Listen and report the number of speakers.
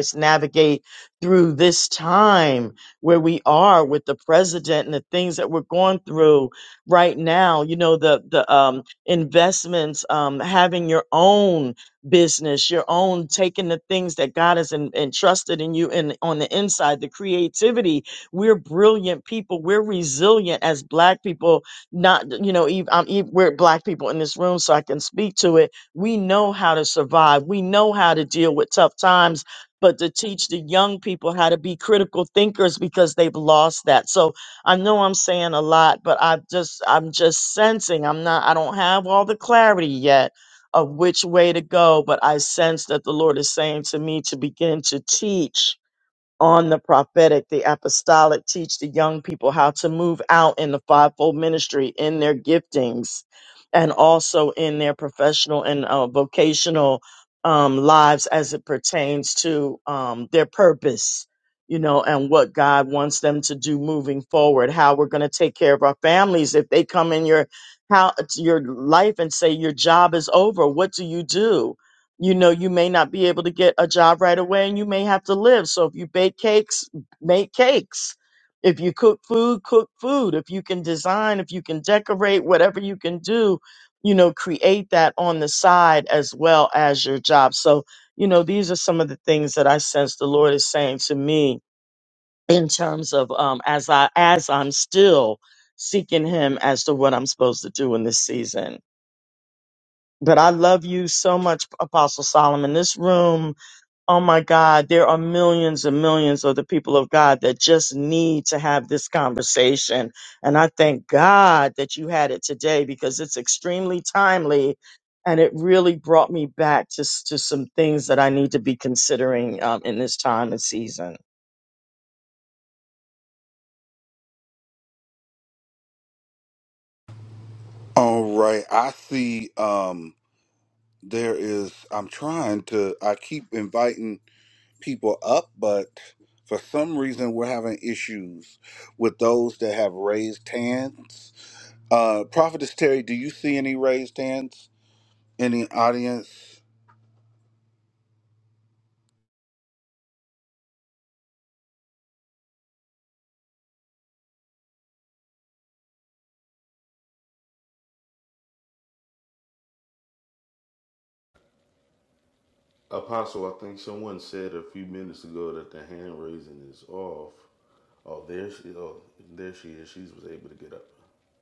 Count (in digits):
3